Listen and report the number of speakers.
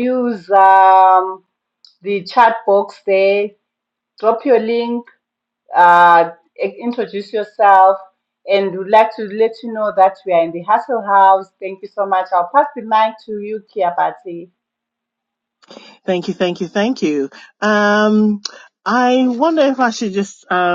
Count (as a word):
two